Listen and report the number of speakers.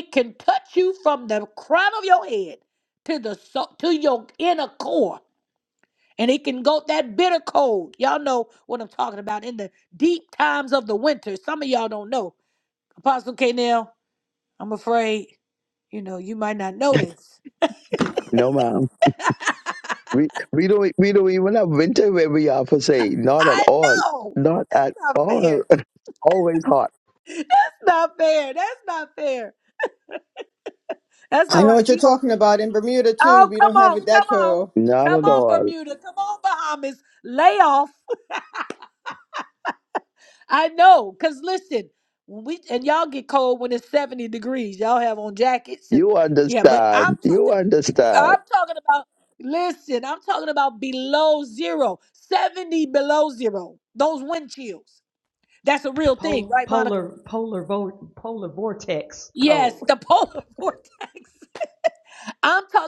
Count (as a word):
four